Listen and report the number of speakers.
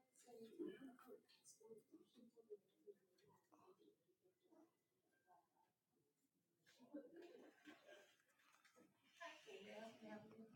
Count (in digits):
0